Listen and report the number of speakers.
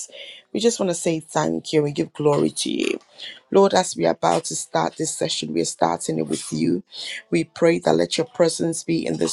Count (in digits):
1